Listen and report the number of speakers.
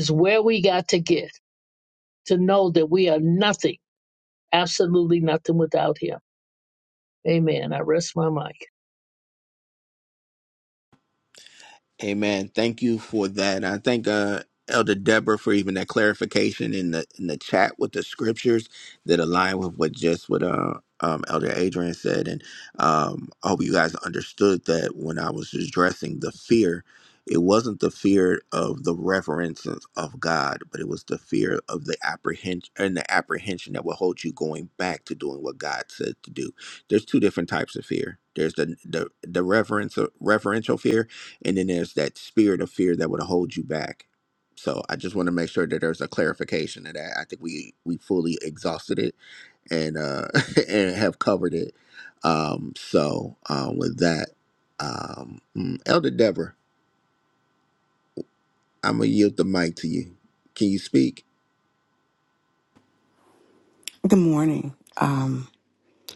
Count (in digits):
3